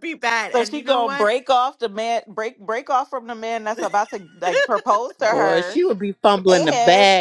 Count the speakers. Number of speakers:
3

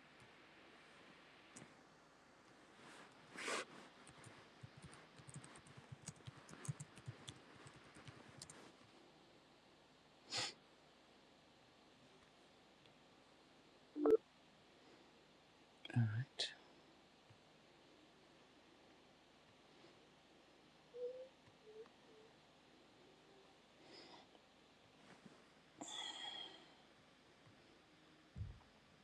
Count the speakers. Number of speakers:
0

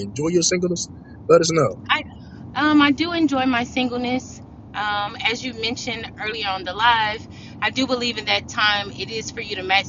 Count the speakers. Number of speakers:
2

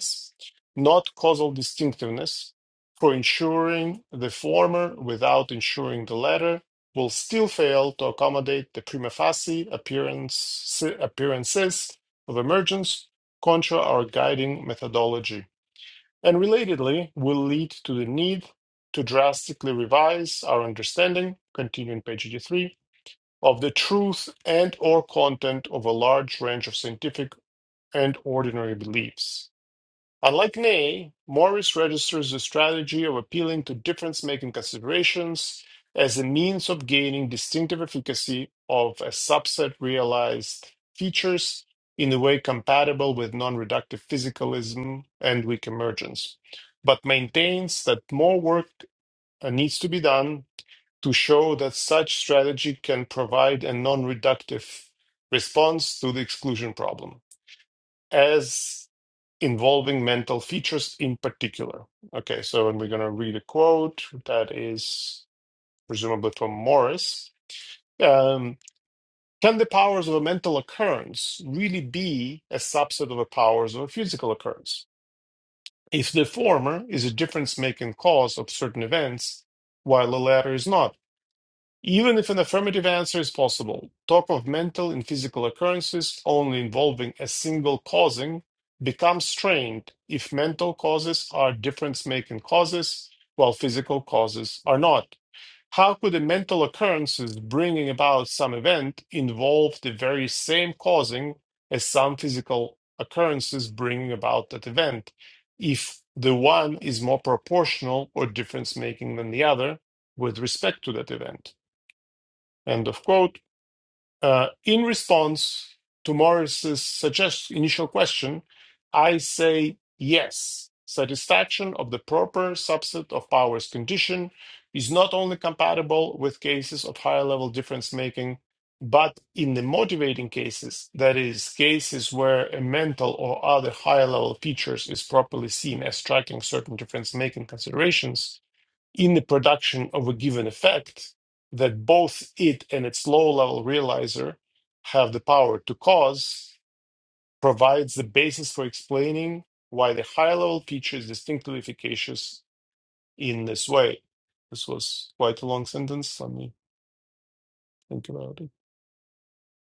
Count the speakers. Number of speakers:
1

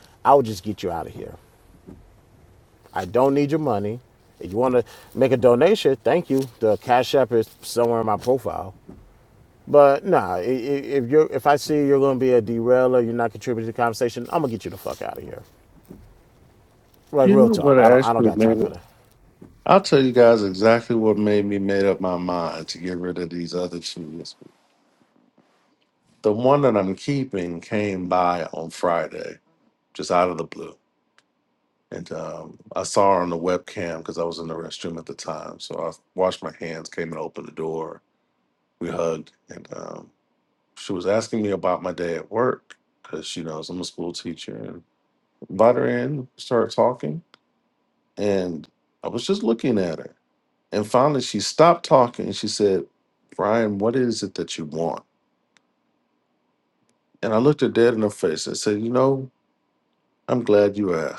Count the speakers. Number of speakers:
2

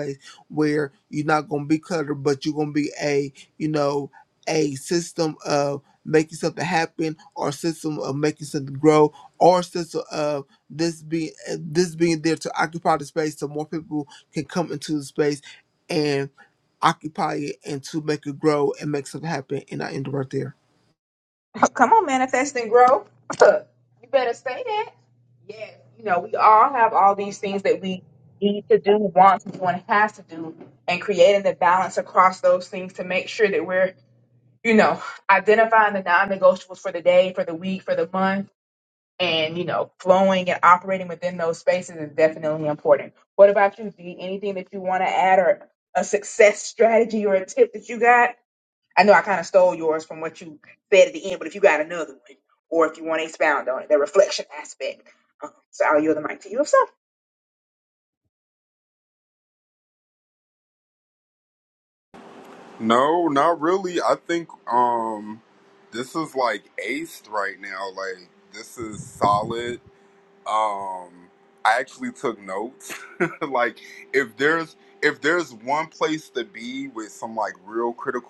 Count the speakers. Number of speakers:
3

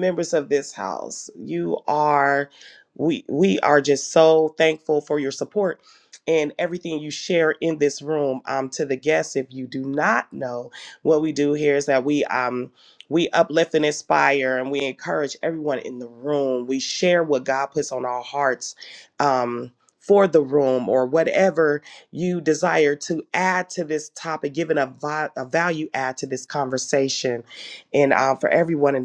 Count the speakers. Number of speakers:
1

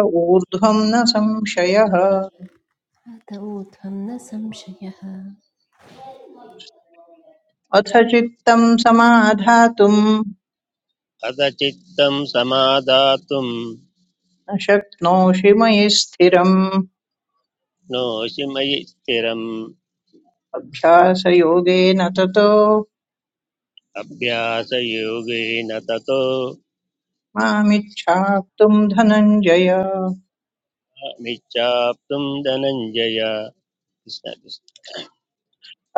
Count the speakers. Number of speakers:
3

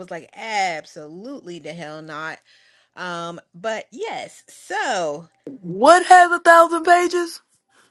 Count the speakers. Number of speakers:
2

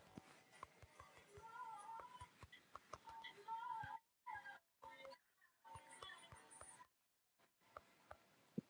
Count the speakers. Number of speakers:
0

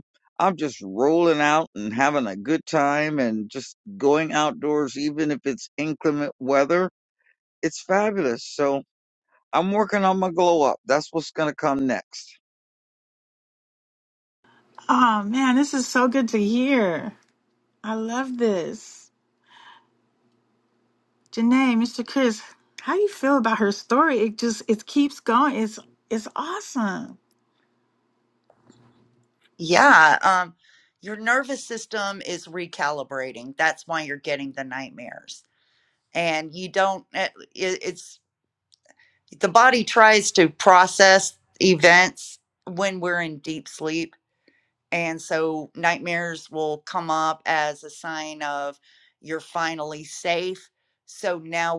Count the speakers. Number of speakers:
3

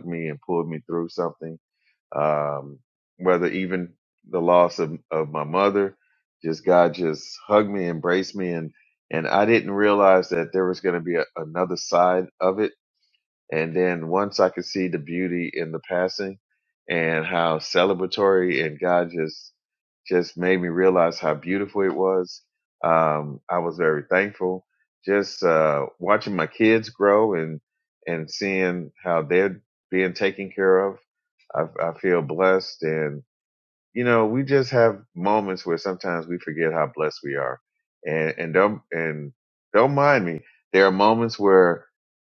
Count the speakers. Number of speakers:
1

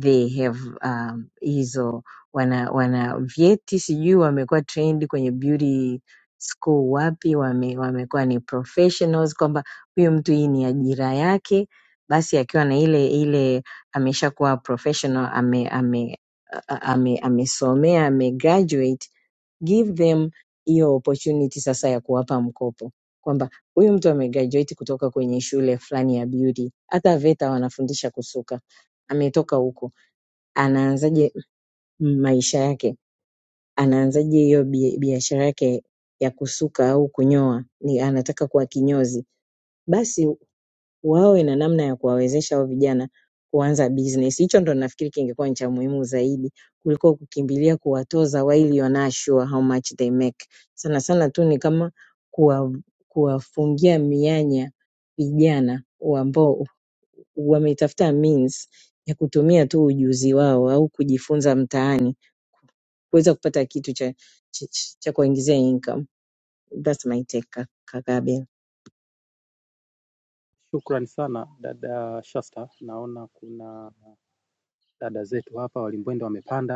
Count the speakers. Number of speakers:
2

